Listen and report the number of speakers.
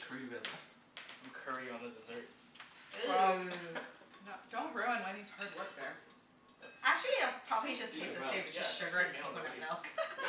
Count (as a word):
four